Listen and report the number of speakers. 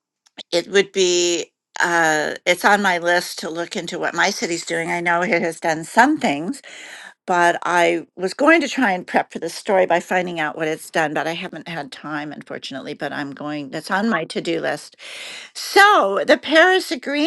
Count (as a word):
one